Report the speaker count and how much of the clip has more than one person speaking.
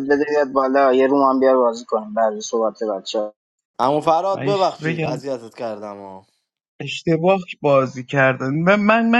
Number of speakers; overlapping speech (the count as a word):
three, about 9%